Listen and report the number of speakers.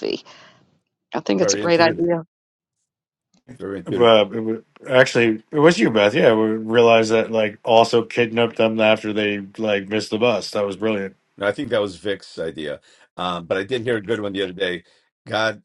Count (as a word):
three